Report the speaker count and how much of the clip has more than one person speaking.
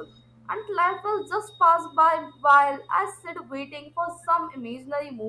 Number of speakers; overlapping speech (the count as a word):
one, no overlap